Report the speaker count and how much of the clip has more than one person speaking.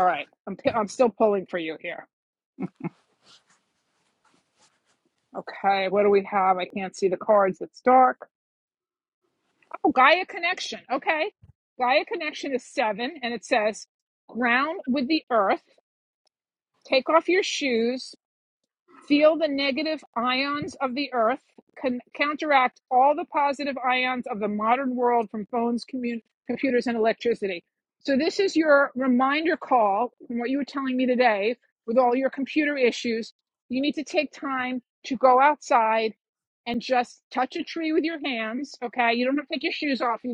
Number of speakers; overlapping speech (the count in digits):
1, no overlap